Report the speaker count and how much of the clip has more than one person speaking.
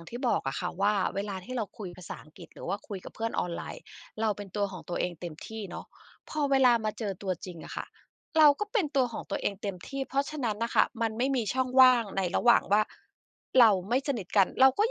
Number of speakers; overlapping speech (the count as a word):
one, no overlap